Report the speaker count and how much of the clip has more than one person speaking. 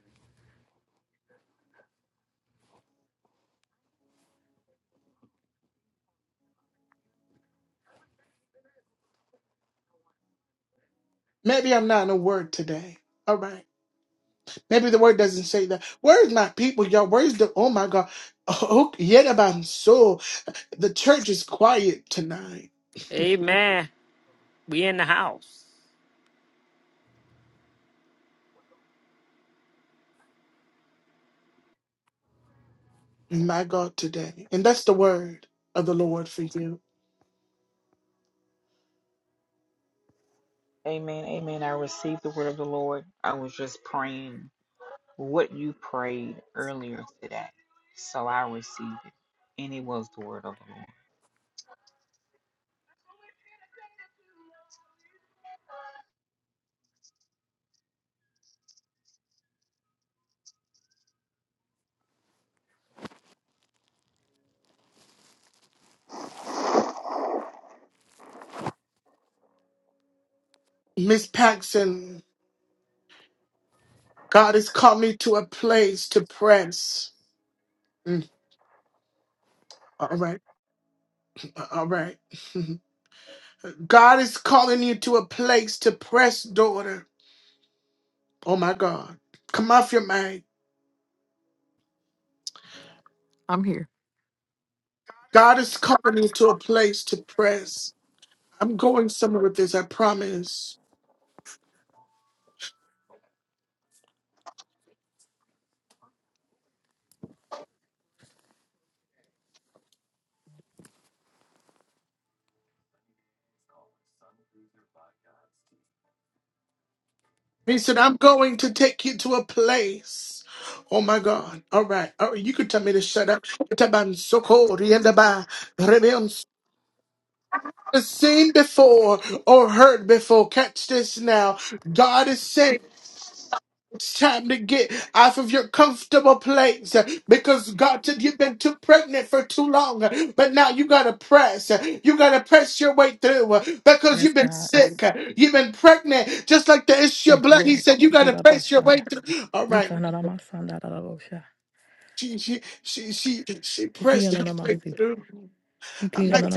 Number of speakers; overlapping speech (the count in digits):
4, about 2%